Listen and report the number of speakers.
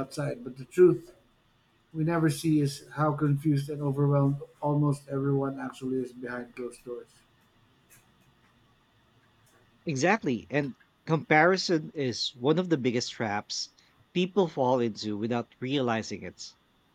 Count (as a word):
two